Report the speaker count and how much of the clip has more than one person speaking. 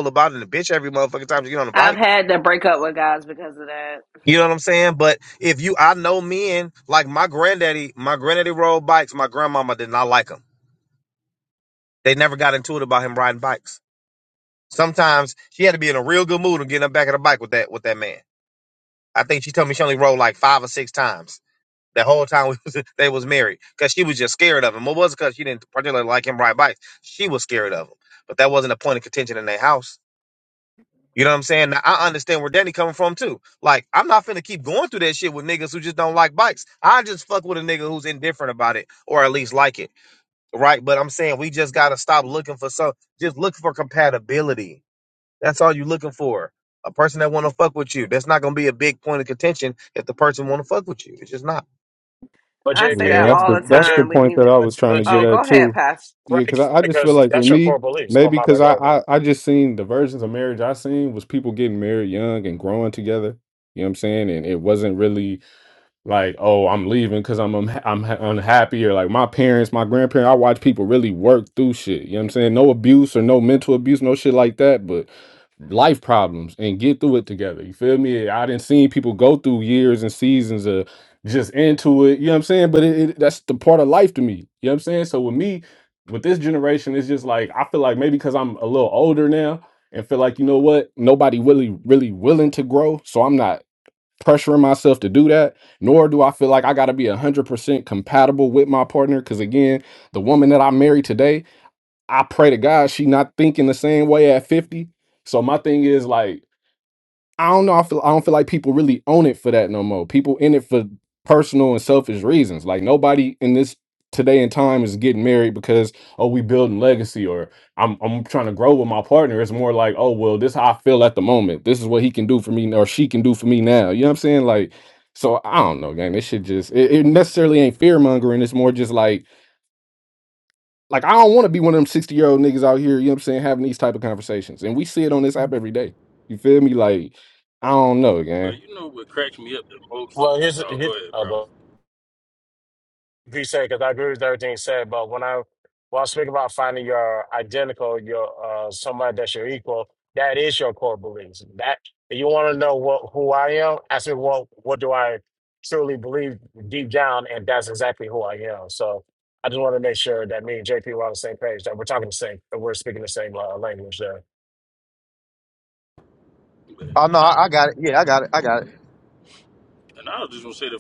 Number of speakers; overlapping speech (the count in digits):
5, about 4%